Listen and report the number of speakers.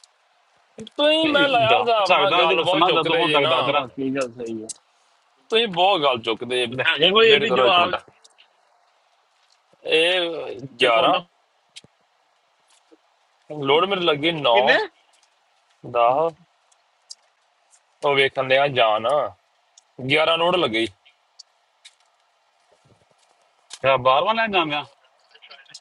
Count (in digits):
3